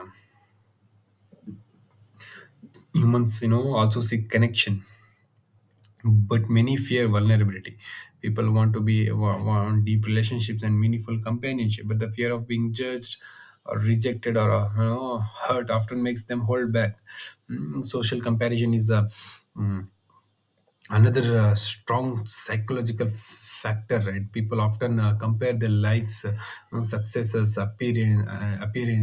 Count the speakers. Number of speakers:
1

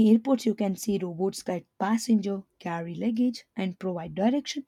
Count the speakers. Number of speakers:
1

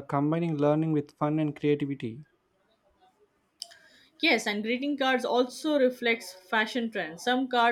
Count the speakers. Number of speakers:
2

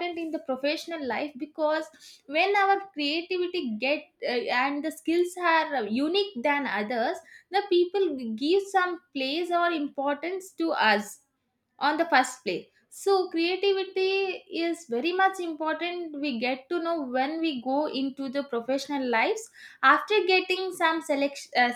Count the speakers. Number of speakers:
1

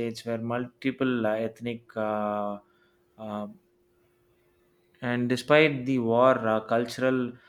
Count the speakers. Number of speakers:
1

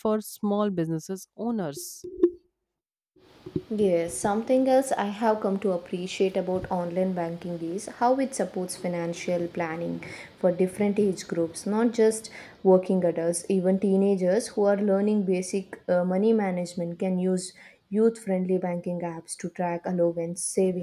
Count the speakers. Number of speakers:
2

